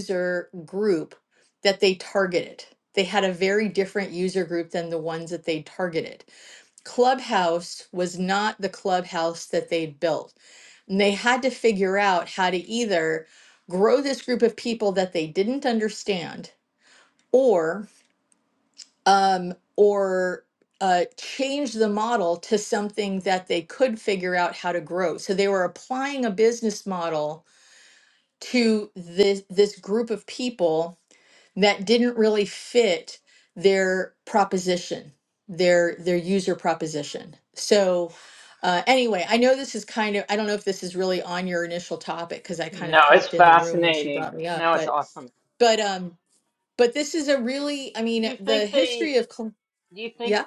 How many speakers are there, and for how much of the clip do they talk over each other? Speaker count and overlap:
two, about 7%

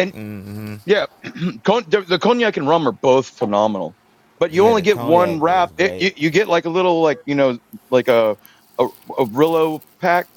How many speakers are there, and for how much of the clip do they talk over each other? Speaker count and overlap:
two, about 16%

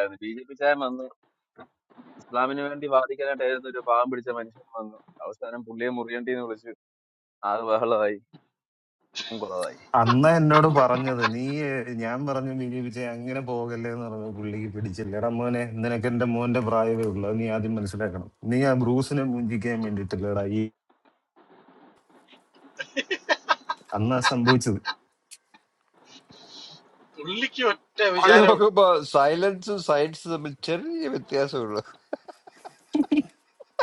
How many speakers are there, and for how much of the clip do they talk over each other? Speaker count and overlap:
four, about 1%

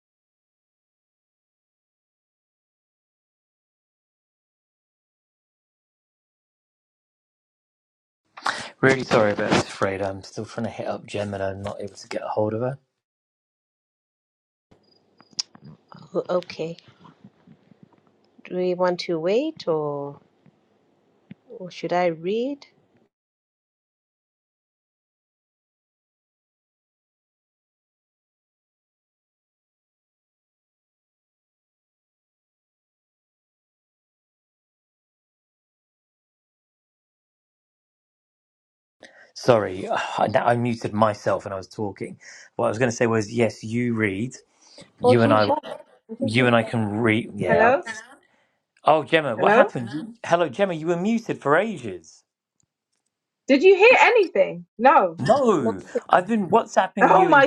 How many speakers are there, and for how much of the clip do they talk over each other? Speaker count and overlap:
three, about 5%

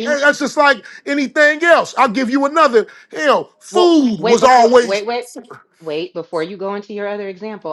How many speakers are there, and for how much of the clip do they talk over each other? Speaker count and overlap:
two, about 19%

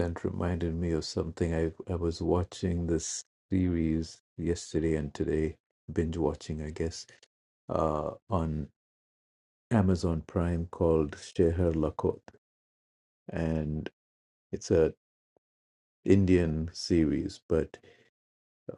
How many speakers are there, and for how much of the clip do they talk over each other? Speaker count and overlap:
one, no overlap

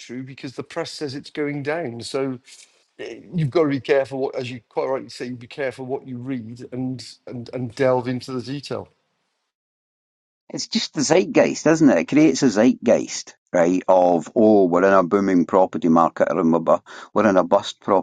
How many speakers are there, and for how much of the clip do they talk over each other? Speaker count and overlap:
two, no overlap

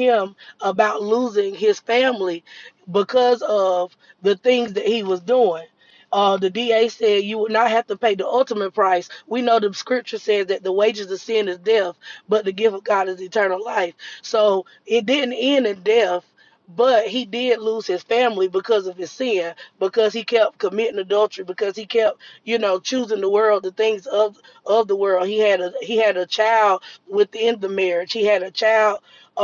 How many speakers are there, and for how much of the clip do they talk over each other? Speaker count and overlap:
one, no overlap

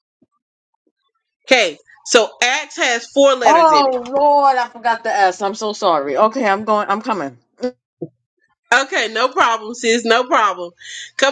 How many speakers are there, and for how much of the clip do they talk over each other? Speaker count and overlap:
two, about 5%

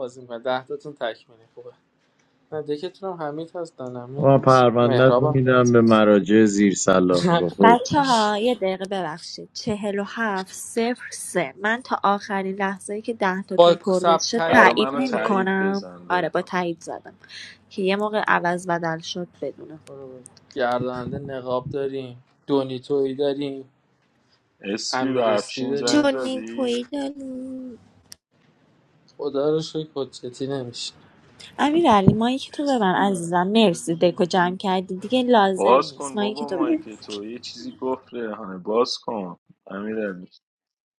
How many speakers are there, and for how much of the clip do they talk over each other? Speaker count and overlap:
four, about 18%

